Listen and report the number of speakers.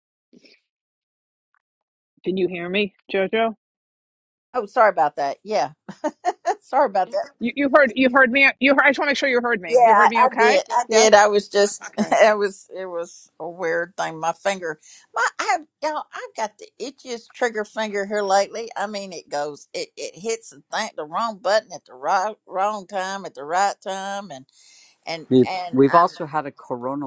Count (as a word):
three